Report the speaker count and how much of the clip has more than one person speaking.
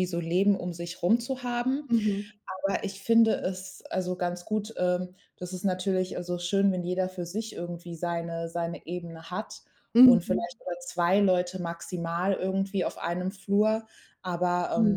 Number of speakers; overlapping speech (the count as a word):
two, about 4%